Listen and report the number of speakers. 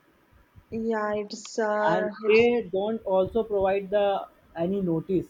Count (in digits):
2